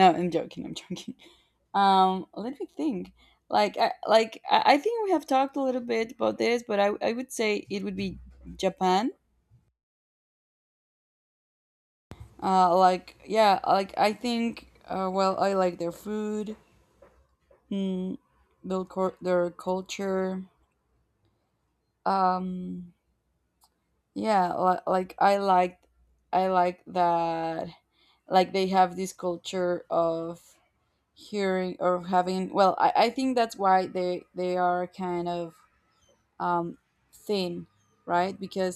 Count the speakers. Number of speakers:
1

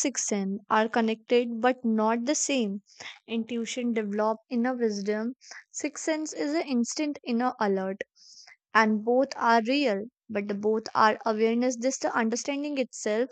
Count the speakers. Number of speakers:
1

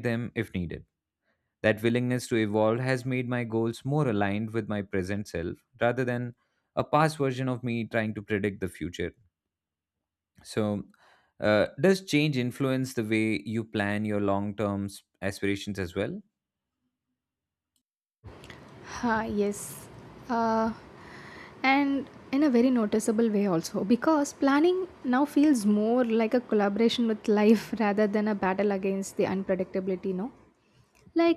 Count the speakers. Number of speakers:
2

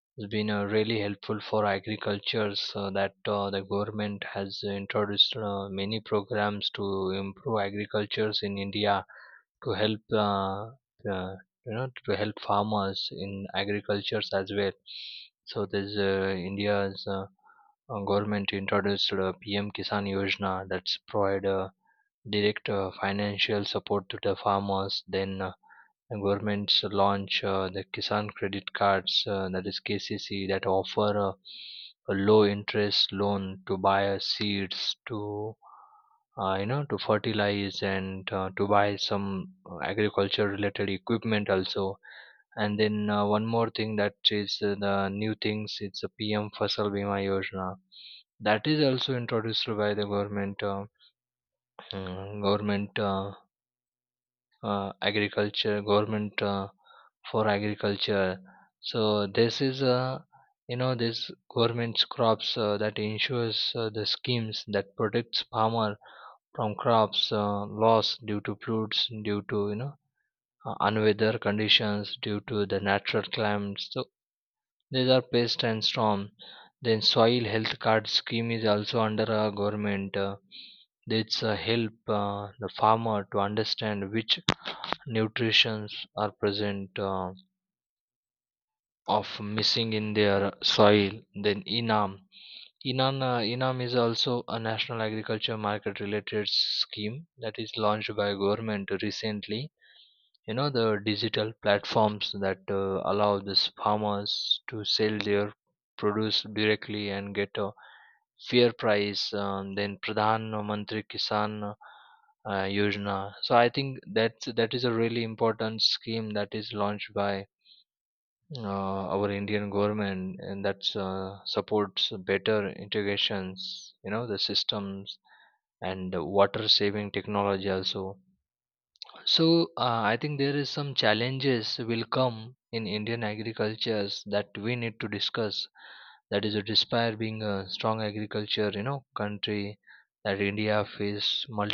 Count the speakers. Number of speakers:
1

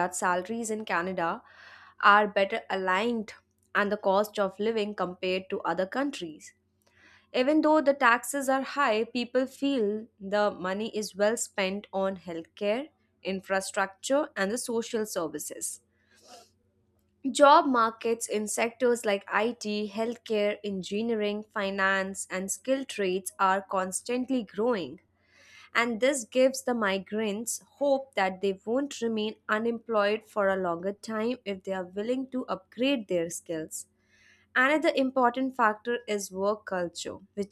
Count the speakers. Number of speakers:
1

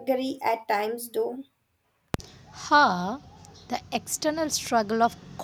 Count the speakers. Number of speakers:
2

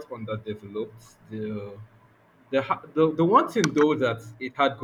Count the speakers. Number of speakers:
1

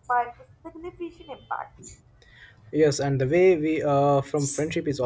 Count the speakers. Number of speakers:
2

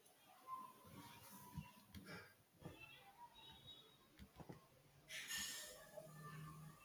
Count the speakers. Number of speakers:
0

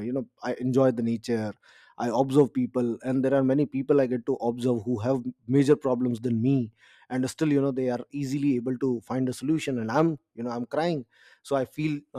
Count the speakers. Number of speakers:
1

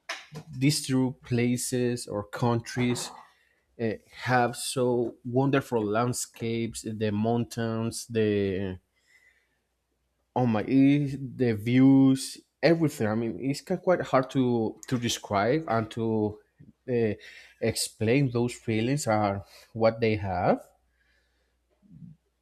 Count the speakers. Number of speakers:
1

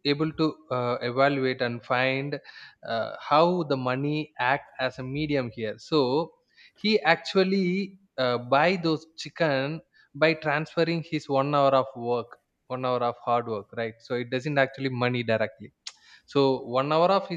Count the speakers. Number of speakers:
1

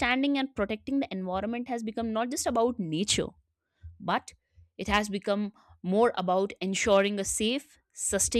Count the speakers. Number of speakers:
1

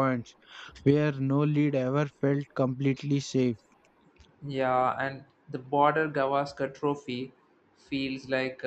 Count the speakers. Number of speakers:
2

